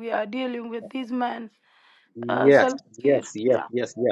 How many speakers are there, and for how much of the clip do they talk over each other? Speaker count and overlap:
2, about 35%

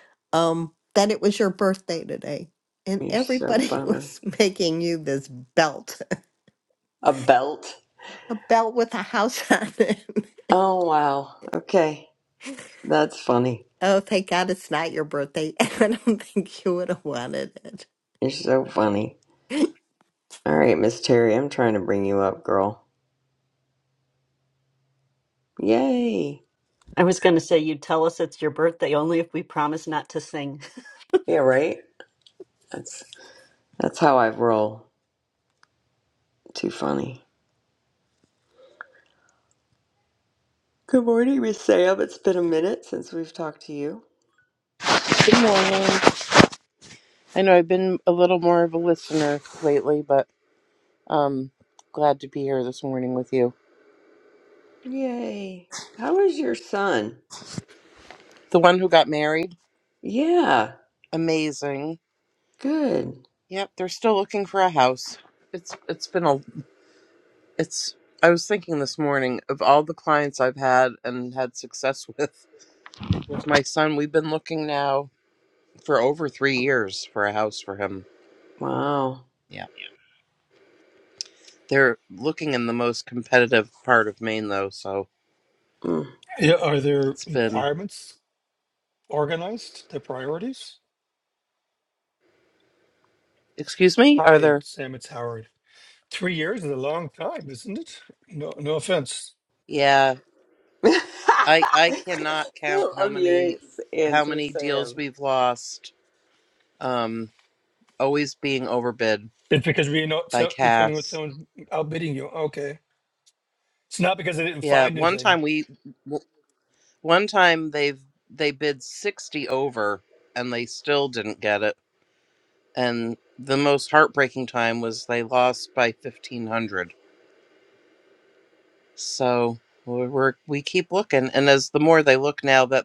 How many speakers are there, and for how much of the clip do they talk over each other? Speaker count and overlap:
5, about 4%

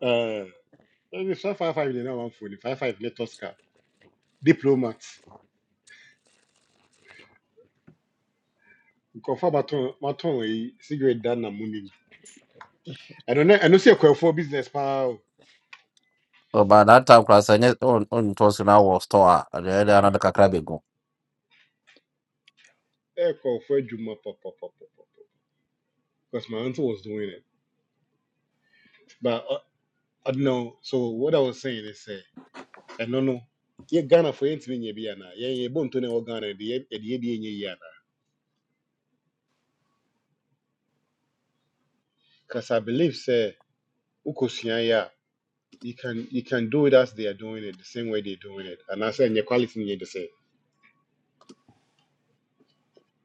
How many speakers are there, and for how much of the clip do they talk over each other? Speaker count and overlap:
2, no overlap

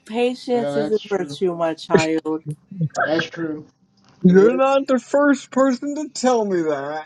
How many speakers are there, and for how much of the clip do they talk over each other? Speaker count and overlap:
3, about 16%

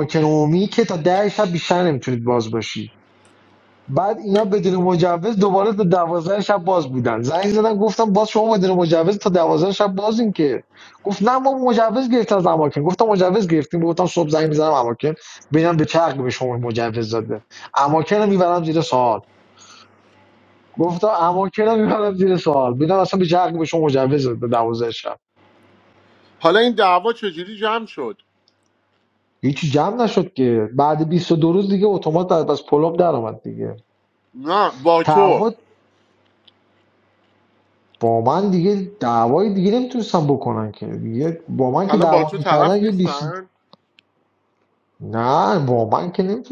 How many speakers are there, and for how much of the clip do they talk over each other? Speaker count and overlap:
2, about 4%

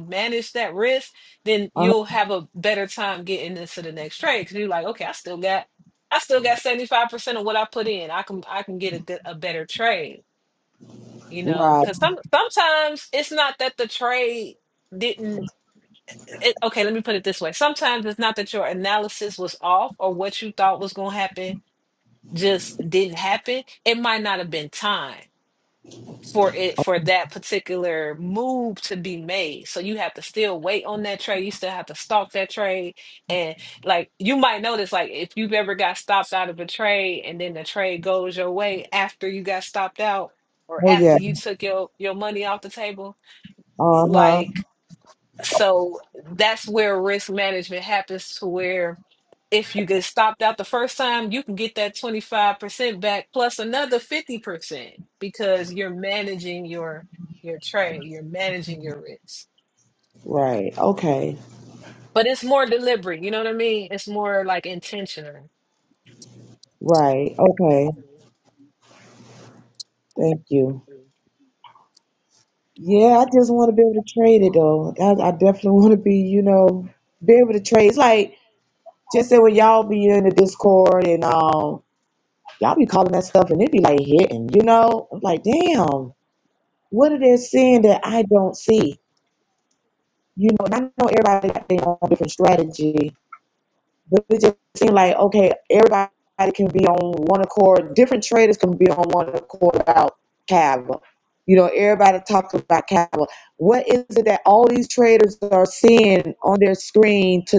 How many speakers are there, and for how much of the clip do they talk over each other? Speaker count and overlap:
2, about 1%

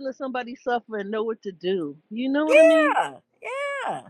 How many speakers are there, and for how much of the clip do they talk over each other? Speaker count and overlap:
2, about 12%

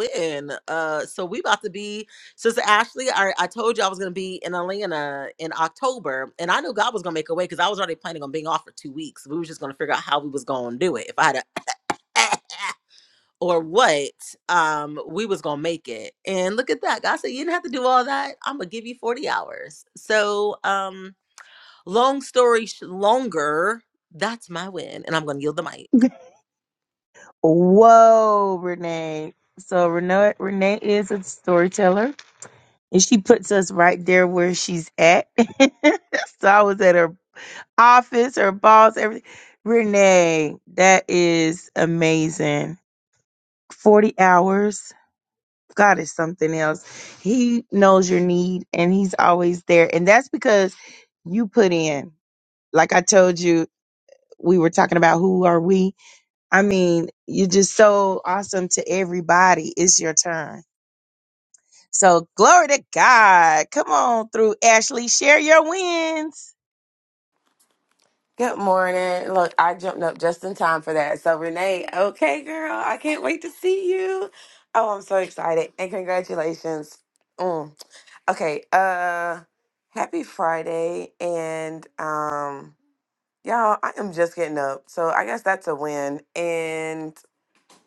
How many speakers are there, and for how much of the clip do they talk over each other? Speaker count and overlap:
3, no overlap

